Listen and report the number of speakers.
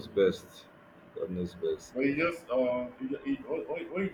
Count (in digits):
2